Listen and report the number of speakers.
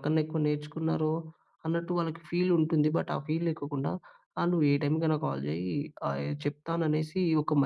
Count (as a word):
one